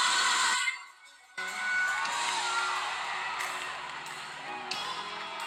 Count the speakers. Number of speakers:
0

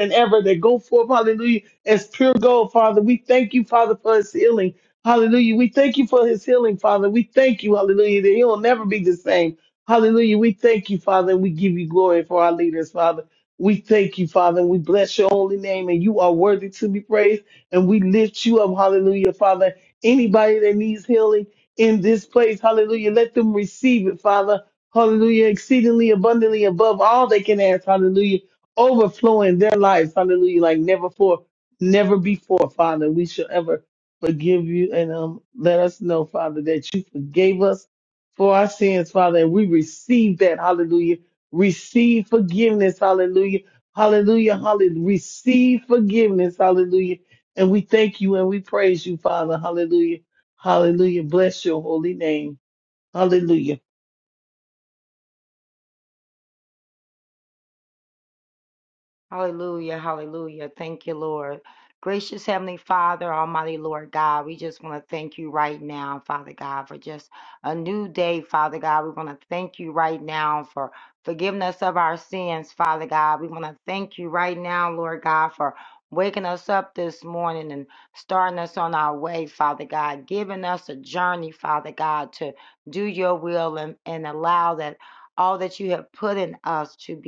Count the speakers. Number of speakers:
2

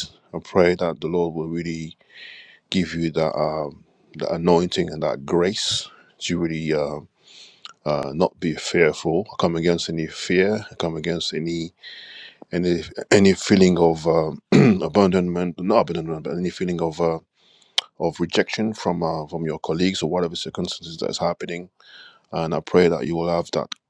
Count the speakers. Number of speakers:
1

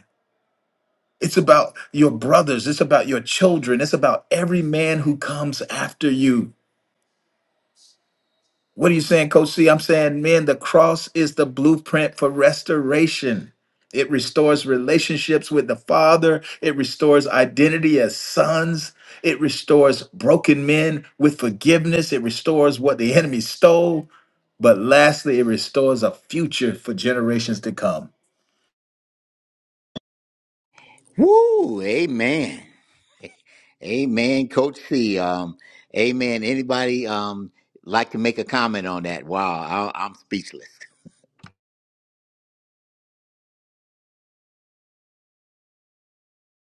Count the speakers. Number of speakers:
2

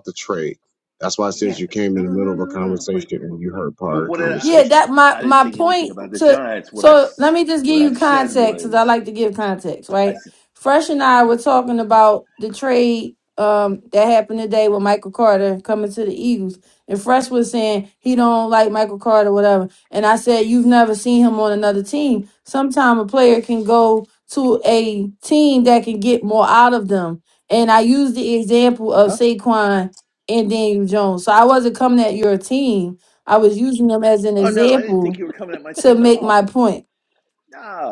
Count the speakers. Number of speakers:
3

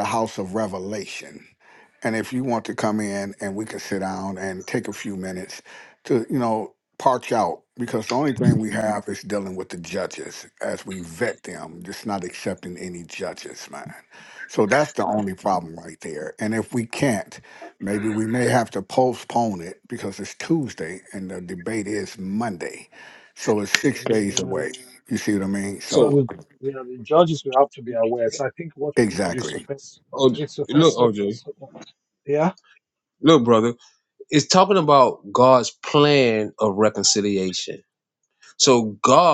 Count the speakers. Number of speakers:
3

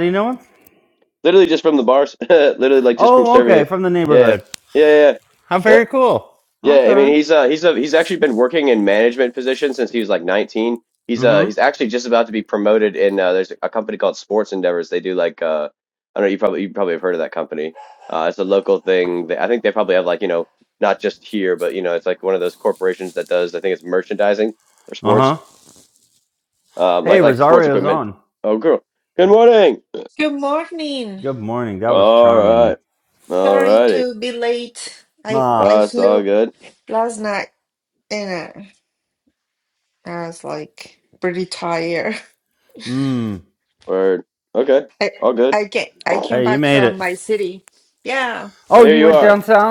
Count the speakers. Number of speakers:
3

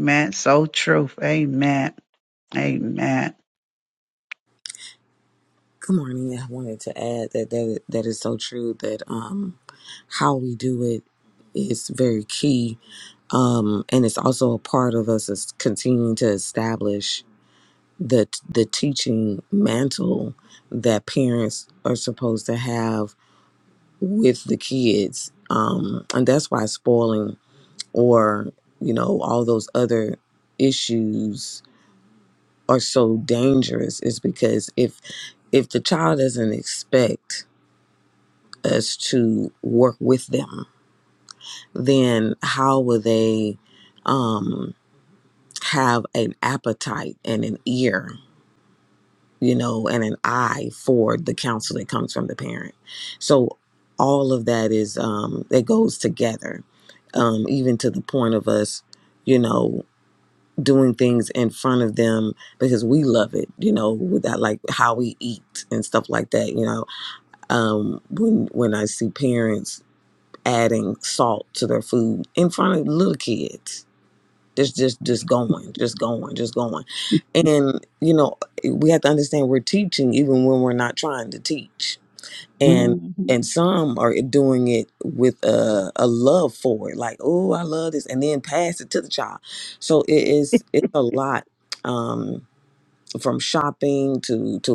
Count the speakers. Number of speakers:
2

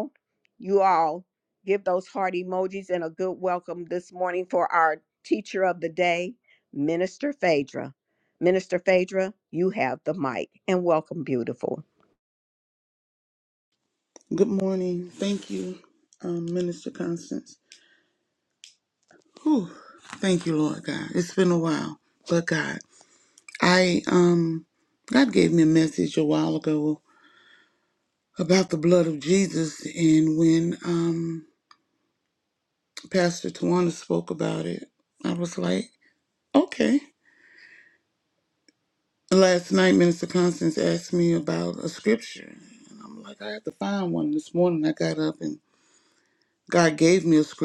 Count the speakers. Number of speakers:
2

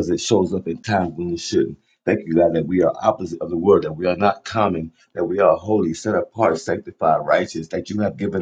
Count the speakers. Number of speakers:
1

